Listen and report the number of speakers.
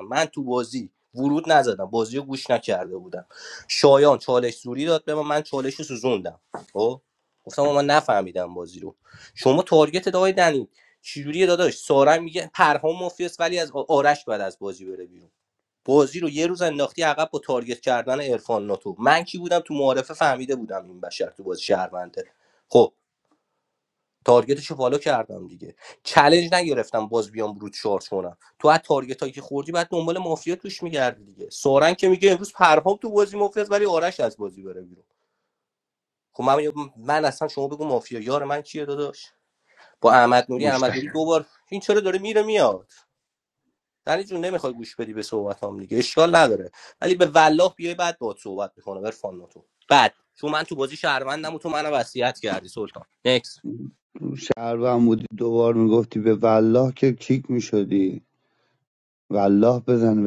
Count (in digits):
2